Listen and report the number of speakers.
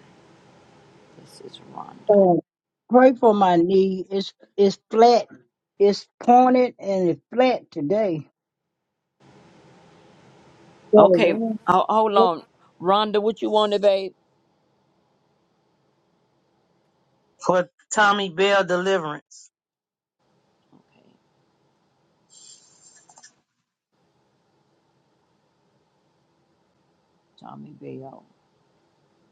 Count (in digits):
3